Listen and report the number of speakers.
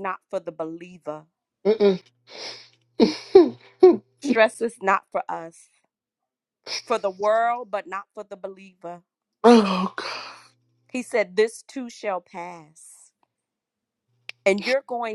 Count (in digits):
2